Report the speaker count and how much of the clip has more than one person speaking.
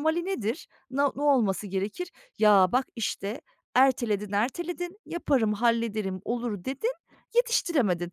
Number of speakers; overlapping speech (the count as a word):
one, no overlap